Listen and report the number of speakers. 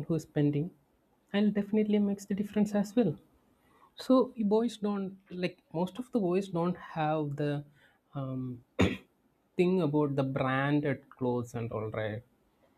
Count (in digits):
1